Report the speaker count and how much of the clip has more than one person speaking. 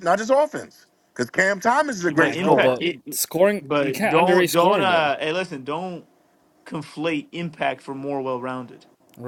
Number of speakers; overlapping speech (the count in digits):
3, about 25%